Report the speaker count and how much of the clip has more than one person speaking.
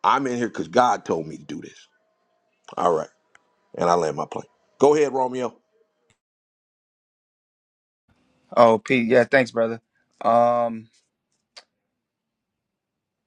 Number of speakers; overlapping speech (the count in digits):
2, no overlap